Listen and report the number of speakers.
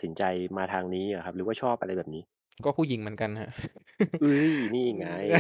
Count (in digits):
2